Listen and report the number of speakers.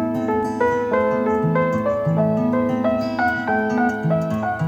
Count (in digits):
0